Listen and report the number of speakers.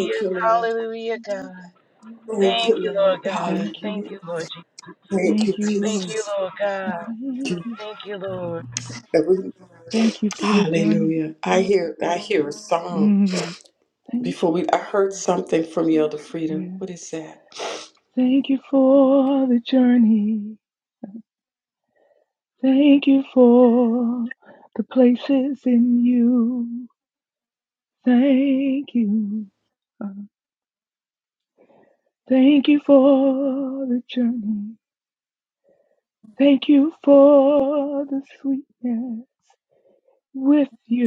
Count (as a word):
three